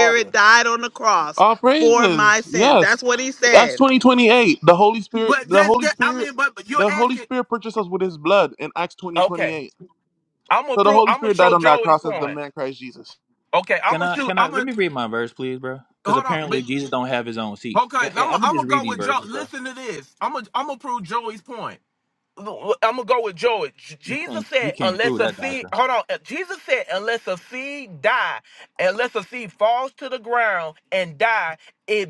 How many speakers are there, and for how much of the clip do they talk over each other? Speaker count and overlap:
4, about 31%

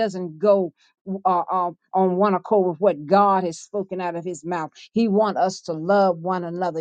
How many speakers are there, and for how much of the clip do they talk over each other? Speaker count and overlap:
1, no overlap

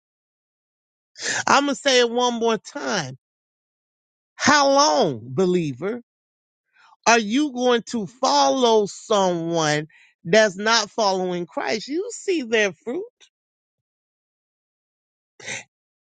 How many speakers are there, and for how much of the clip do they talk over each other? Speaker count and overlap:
1, no overlap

